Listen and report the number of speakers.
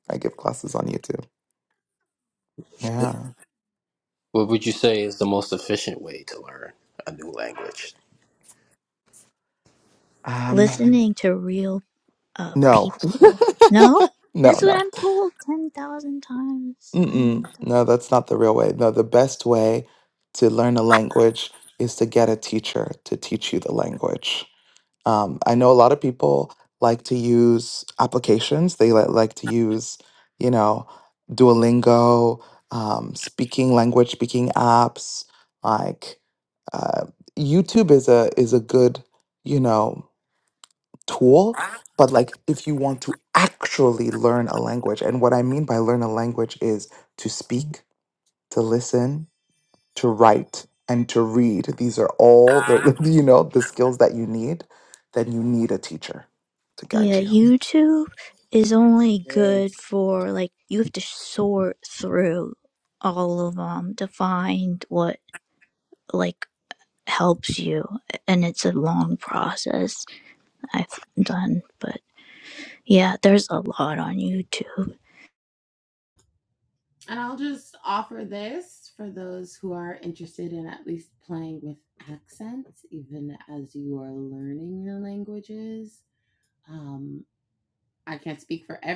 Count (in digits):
4